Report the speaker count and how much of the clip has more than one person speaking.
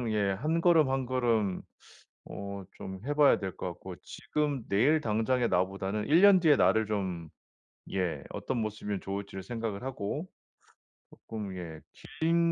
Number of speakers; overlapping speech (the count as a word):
one, no overlap